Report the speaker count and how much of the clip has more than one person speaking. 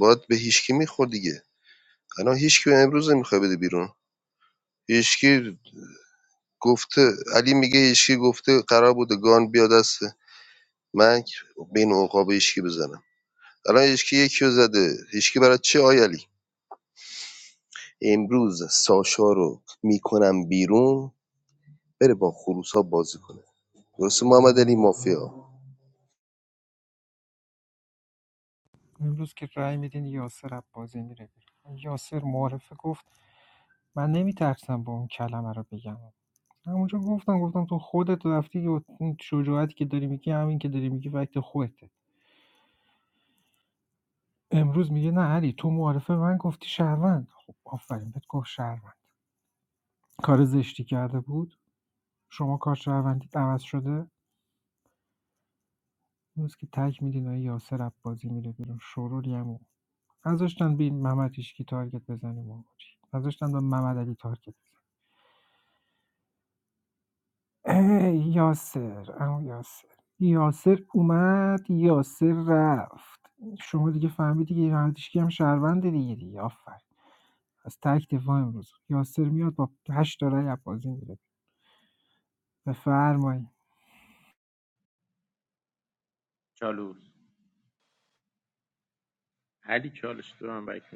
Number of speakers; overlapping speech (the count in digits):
3, no overlap